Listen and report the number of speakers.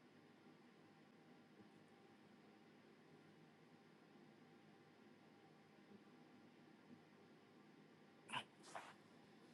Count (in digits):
0